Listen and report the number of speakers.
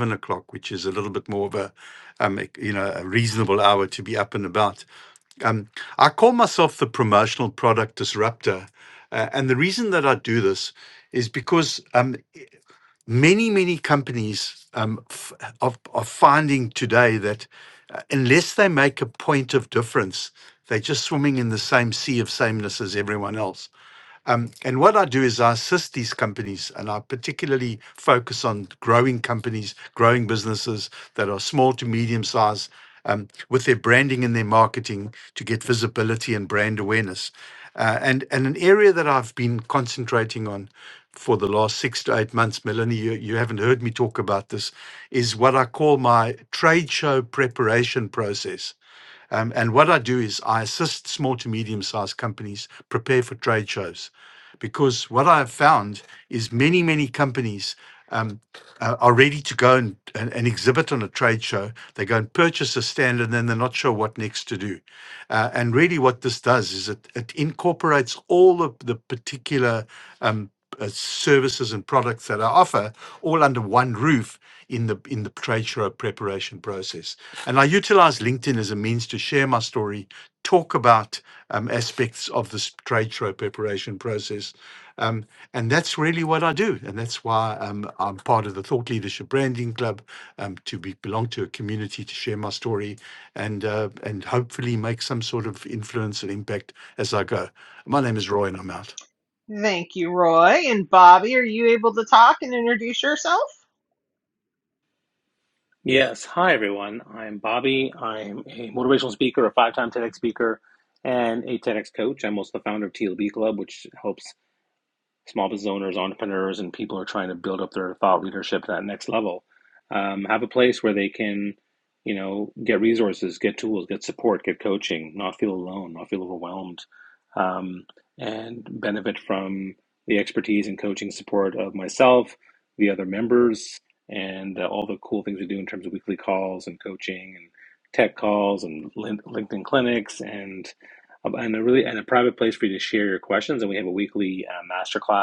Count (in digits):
3